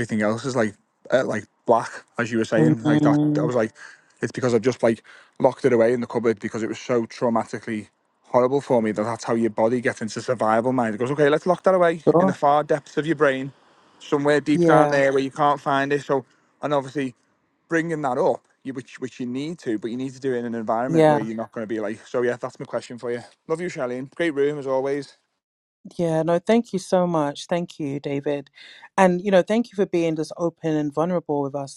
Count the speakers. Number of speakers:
2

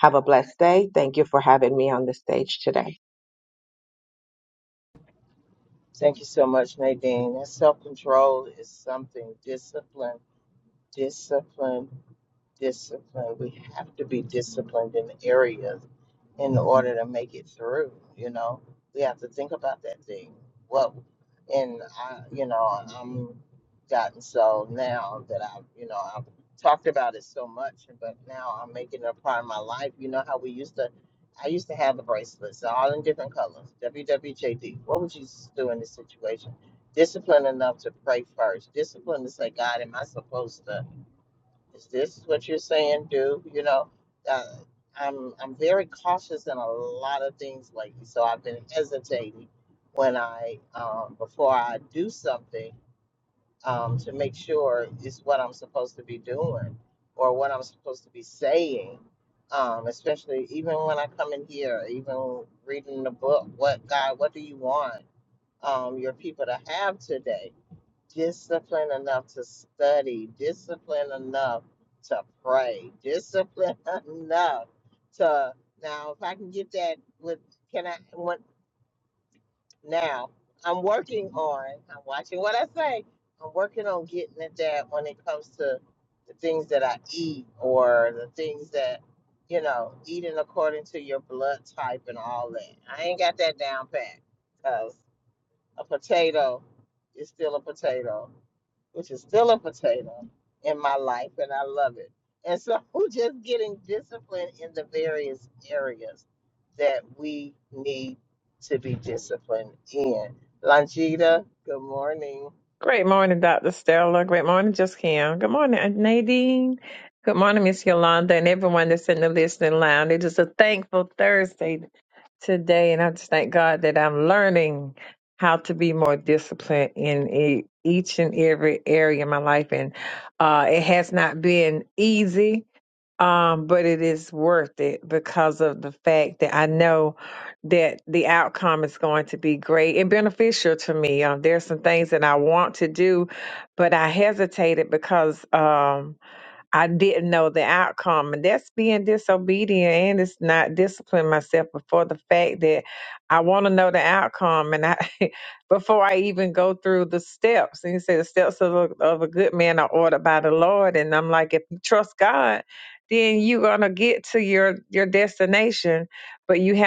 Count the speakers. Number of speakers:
3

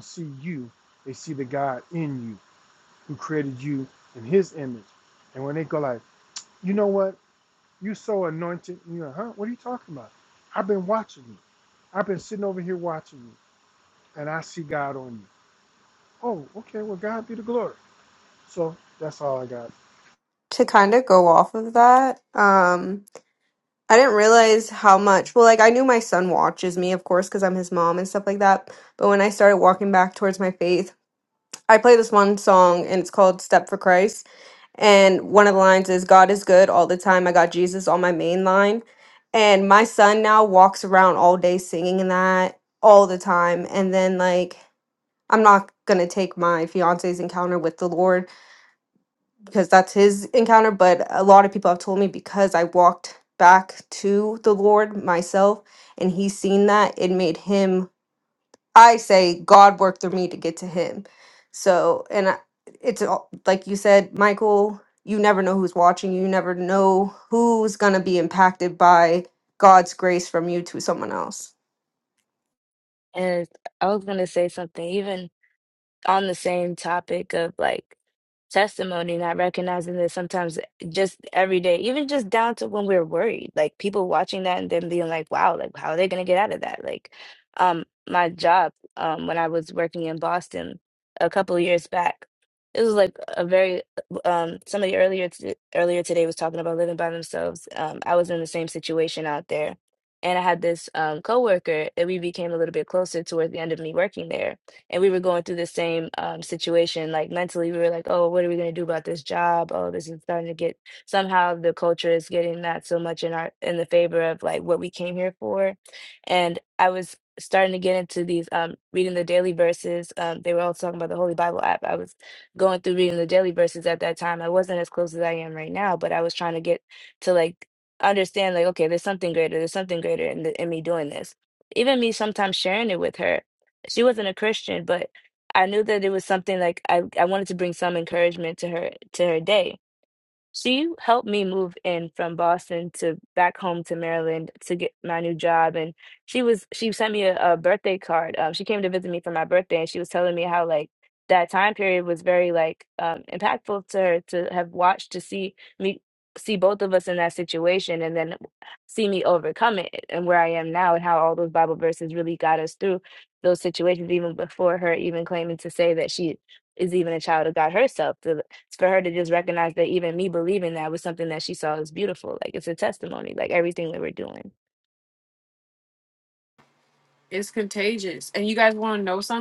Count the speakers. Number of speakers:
4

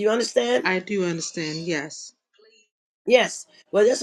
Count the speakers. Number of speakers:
2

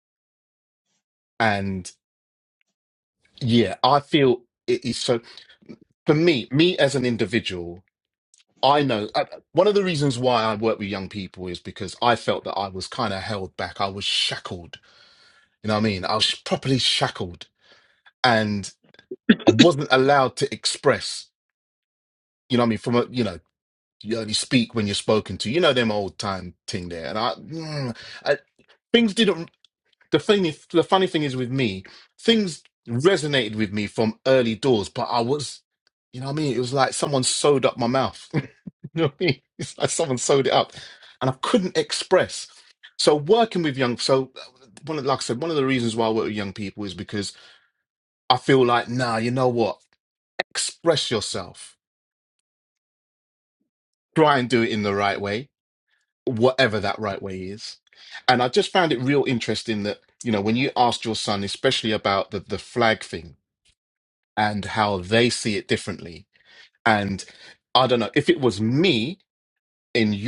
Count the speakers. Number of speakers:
1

